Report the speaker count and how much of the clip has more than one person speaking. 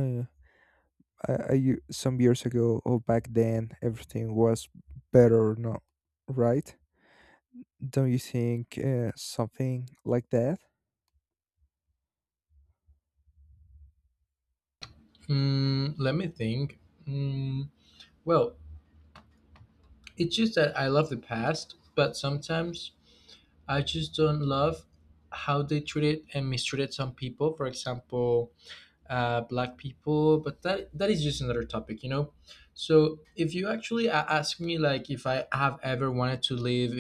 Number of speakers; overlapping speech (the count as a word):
two, no overlap